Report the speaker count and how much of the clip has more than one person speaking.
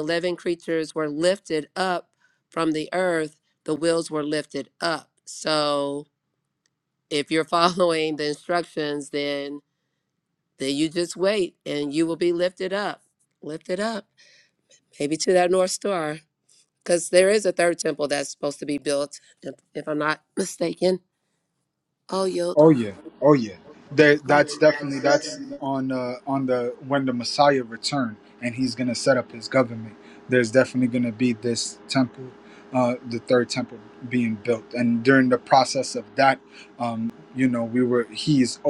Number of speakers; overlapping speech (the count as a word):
two, under 1%